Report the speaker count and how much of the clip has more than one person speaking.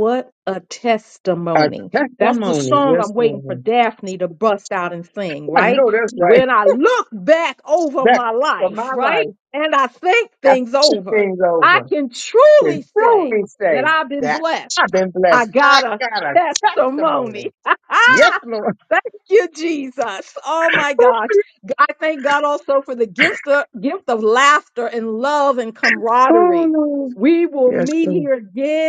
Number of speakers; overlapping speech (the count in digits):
2, about 28%